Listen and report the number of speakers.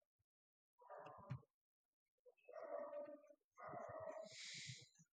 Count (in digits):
0